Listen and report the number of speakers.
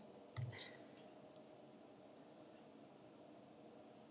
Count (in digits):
0